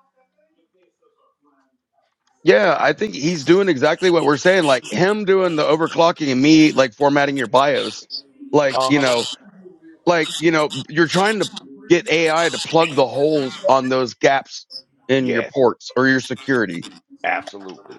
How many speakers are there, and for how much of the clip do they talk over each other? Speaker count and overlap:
two, about 4%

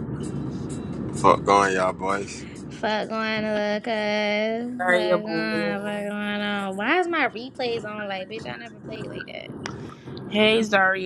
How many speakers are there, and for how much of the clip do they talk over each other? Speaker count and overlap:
three, about 9%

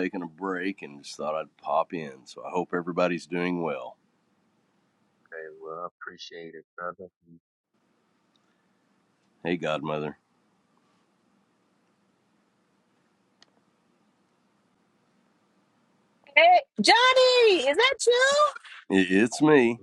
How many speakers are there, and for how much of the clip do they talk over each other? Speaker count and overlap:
three, no overlap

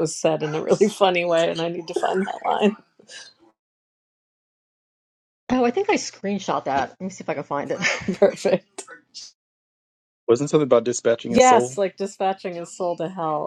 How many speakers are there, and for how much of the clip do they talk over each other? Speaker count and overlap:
three, about 3%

